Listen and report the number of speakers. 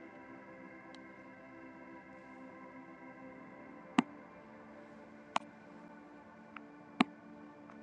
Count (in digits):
0